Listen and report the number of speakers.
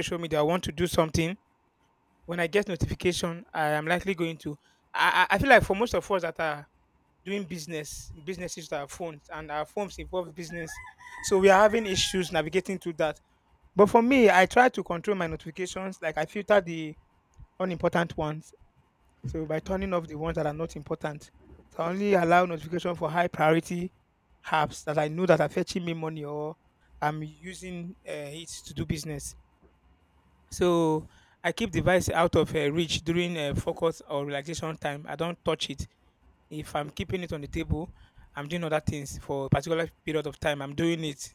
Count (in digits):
1